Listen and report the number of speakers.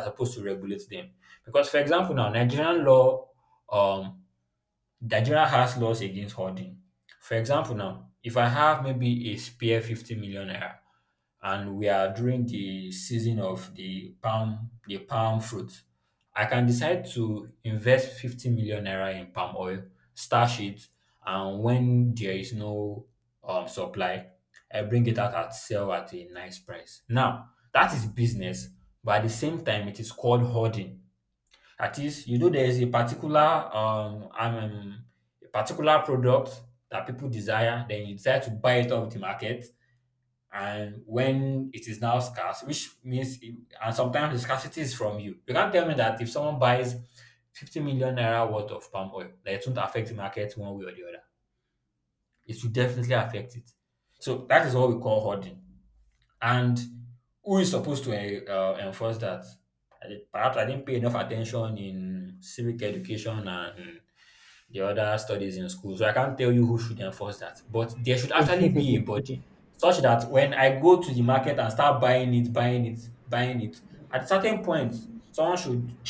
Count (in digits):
1